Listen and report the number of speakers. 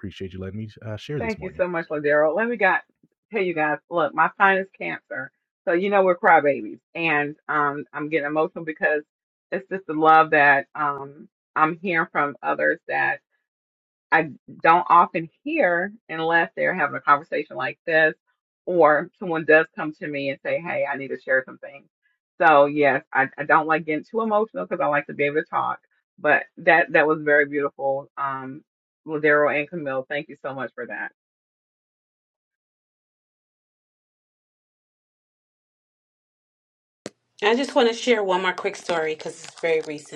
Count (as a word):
three